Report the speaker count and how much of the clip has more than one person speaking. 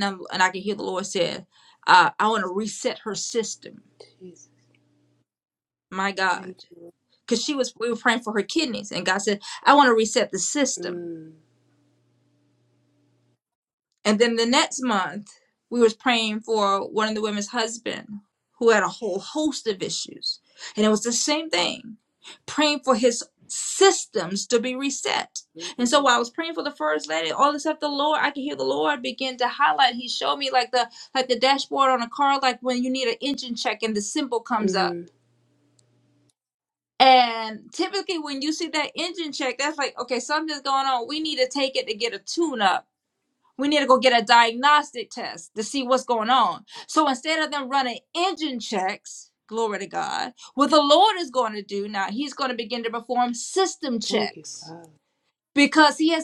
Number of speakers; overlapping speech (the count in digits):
2, about 2%